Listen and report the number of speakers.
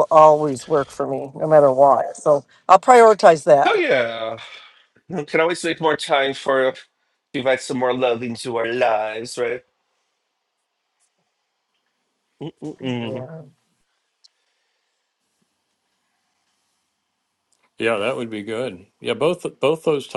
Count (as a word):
three